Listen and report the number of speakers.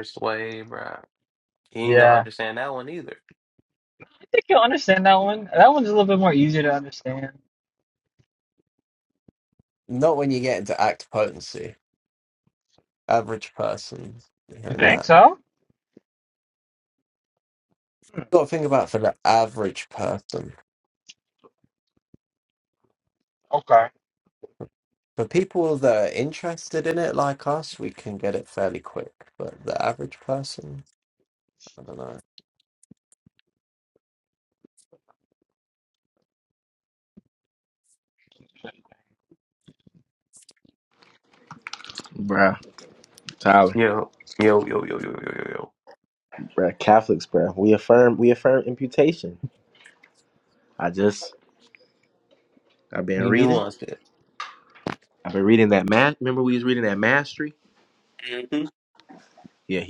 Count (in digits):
4